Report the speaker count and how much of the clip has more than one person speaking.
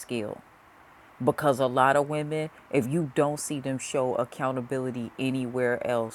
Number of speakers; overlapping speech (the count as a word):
one, no overlap